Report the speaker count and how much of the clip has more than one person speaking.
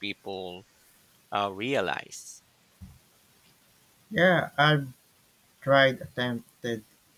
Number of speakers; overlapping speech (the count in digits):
2, no overlap